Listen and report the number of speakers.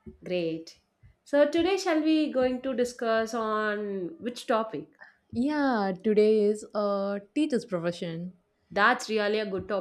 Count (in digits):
2